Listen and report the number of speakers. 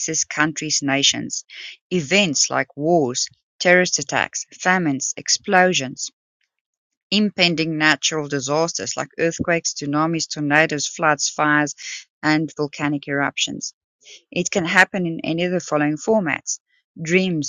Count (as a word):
one